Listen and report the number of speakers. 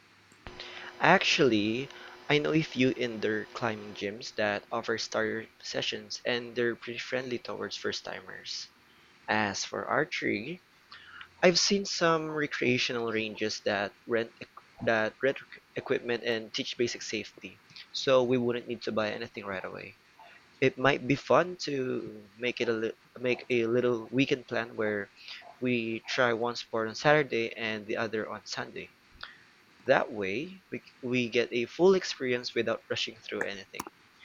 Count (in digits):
1